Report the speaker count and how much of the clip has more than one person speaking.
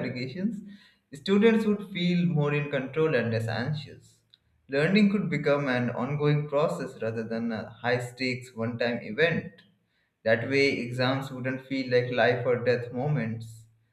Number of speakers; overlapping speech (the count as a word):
one, no overlap